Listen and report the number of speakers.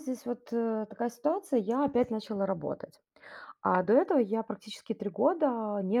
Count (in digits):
1